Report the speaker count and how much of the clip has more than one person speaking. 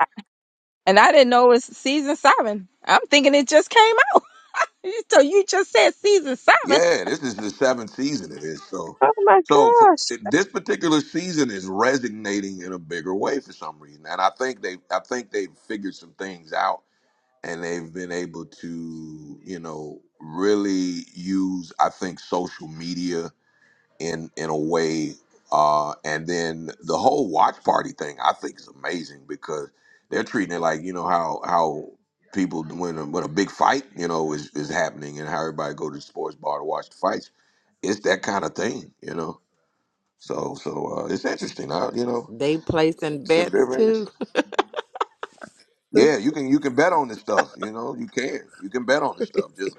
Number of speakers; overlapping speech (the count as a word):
three, about 3%